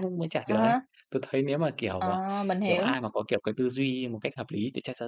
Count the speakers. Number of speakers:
2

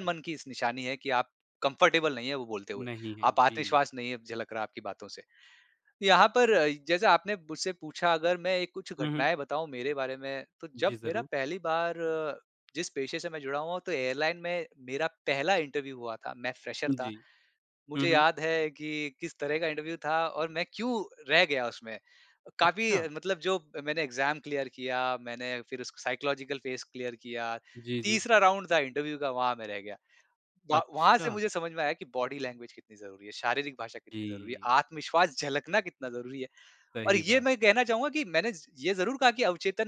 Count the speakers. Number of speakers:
2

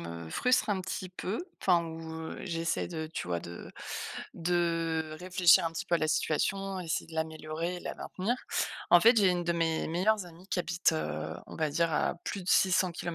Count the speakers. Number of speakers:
1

